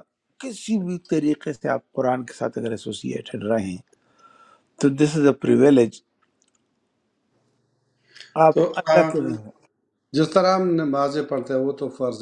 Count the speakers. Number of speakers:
two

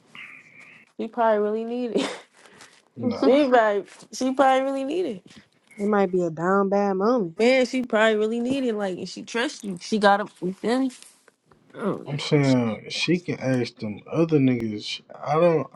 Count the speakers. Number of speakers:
three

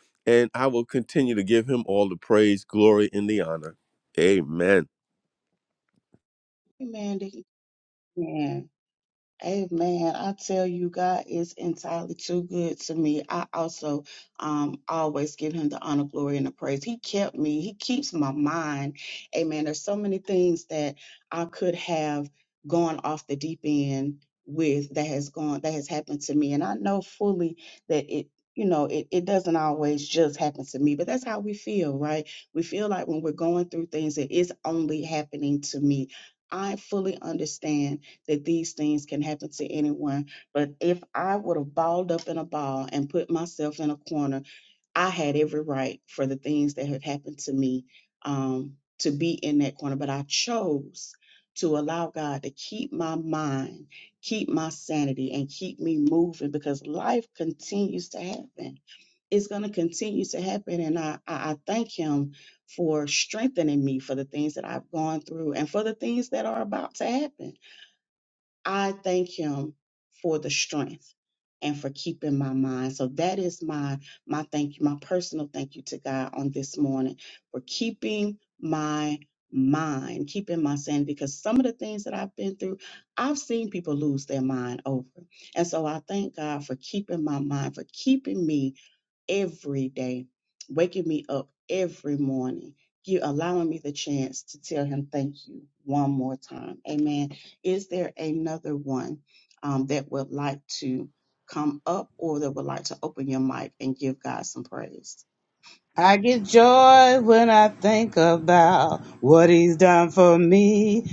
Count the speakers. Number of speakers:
three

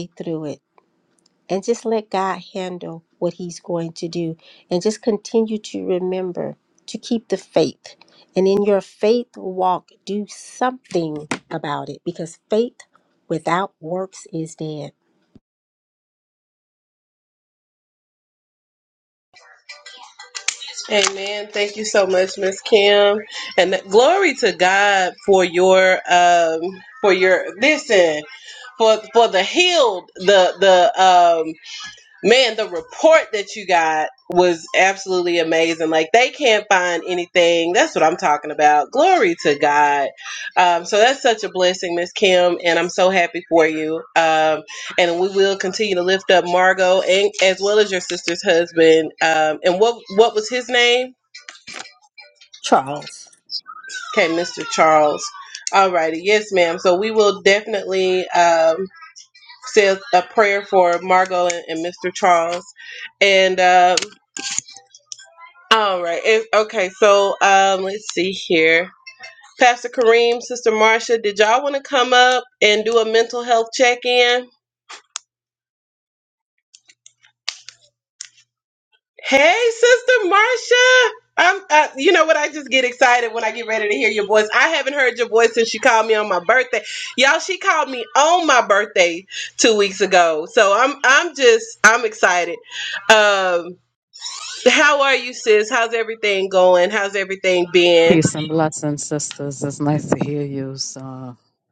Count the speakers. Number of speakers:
three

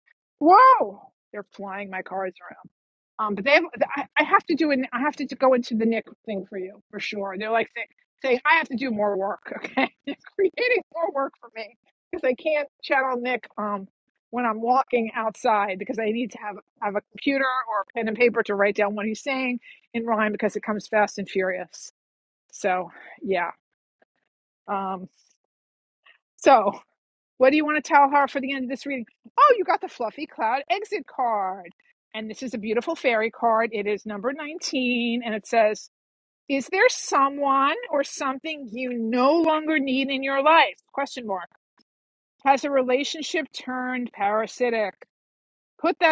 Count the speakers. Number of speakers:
one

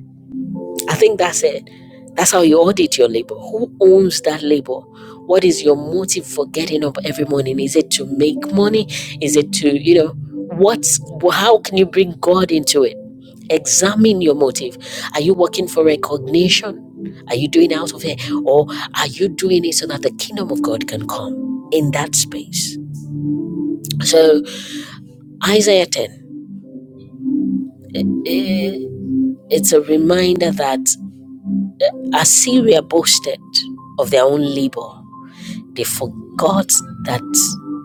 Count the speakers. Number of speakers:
one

